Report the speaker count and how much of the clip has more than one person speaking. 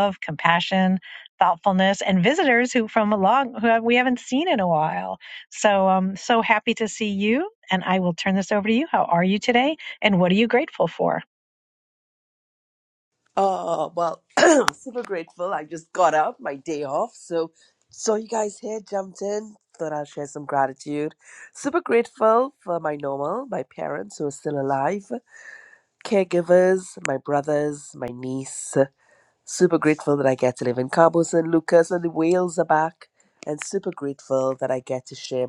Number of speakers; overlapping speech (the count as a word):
two, no overlap